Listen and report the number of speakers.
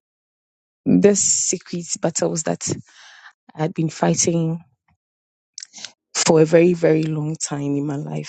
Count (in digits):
1